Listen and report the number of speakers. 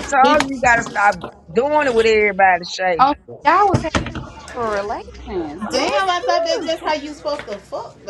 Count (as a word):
three